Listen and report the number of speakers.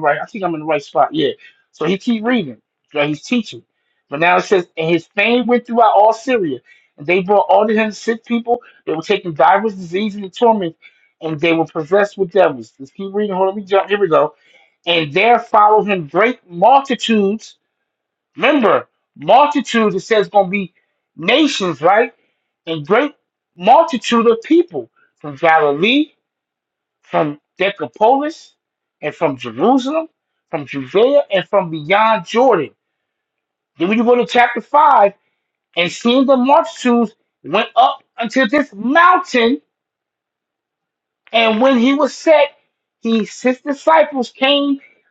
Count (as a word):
one